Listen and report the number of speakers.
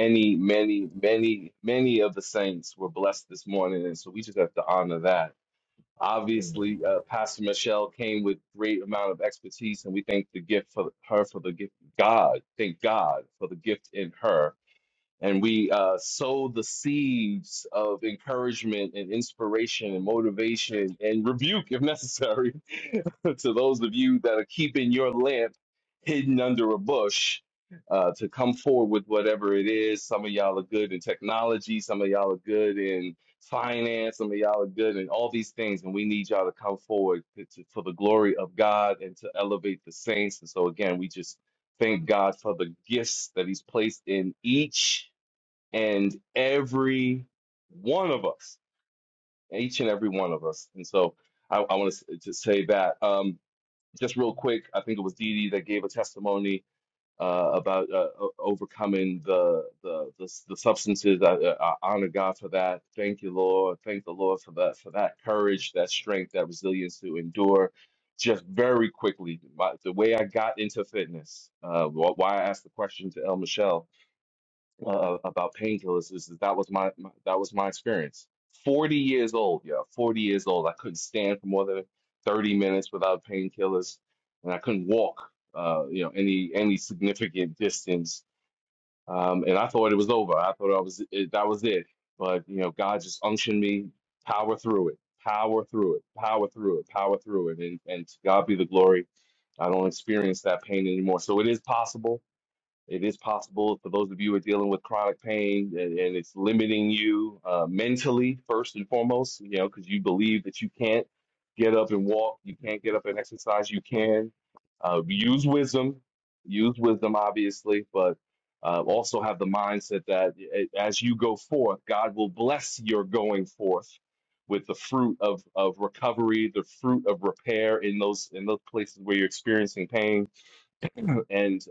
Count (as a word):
one